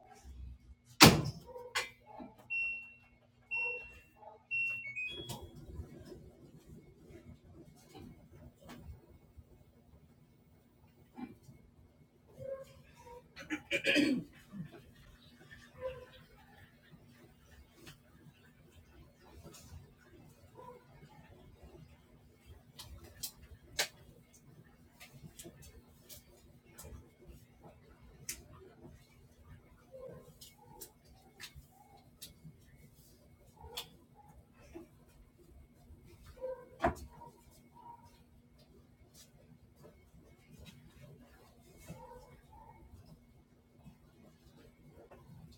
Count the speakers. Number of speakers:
0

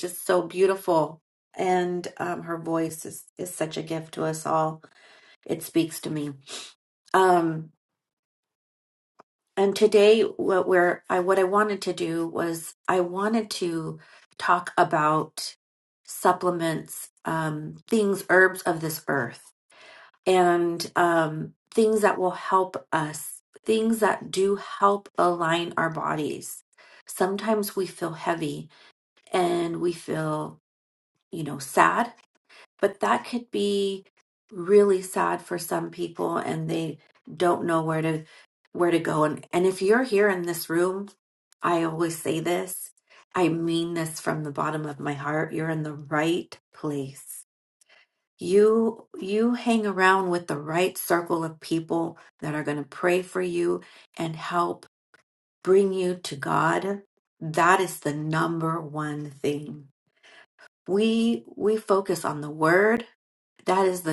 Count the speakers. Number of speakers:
1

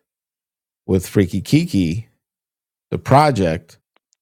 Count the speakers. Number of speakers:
1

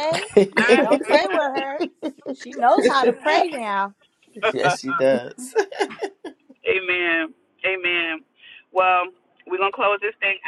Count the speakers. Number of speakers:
3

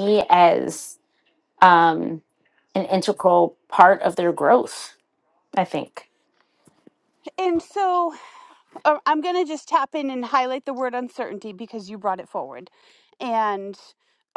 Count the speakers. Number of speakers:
2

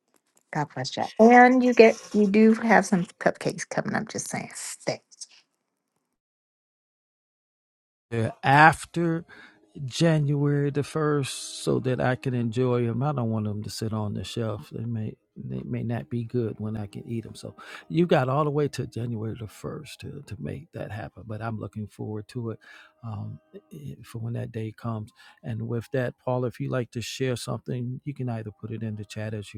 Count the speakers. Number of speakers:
2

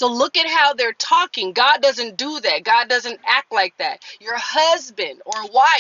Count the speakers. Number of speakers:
1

